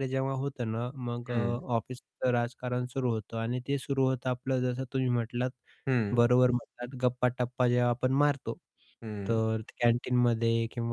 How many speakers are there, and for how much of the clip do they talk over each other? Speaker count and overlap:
2, about 5%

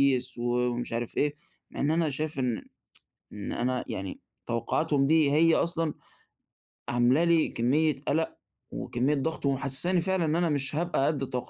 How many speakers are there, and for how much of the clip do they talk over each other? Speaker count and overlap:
1, no overlap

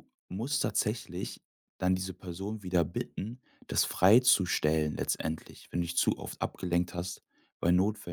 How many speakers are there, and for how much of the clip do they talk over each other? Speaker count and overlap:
1, no overlap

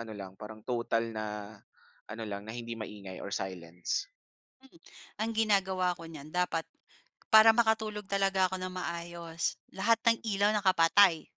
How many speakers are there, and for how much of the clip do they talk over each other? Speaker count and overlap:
2, about 1%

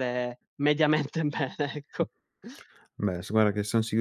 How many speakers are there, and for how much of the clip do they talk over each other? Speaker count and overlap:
2, no overlap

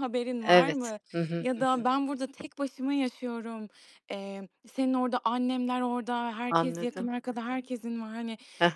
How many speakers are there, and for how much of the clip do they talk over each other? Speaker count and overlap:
2, about 18%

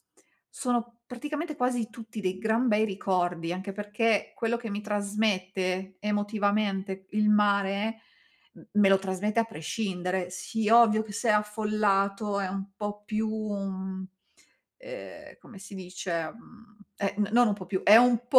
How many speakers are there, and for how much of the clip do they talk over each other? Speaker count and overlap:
1, no overlap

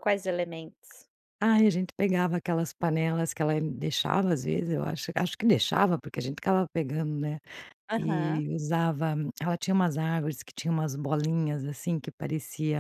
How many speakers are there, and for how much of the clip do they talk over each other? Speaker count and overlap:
2, about 3%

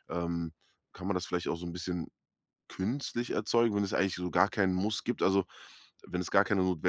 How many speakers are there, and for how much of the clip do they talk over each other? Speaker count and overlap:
1, no overlap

